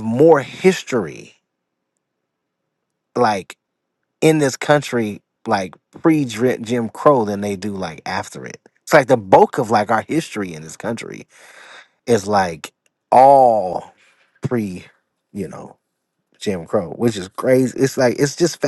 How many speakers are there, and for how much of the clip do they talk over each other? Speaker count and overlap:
1, no overlap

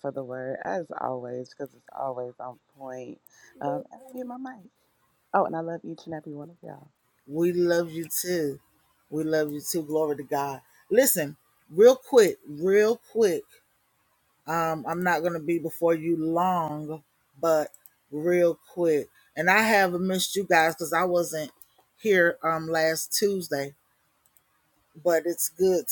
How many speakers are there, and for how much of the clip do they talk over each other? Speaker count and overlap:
2, no overlap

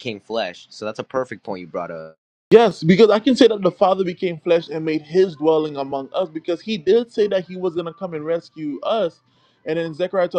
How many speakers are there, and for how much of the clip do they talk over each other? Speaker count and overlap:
2, no overlap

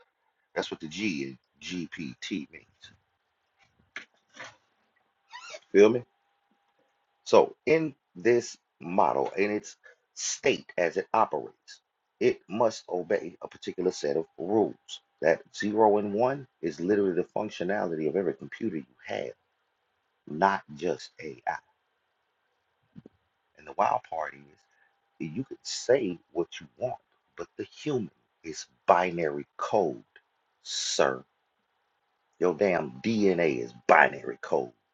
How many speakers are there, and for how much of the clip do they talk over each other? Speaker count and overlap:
1, no overlap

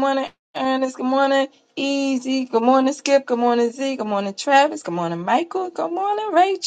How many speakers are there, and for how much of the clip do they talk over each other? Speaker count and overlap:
1, no overlap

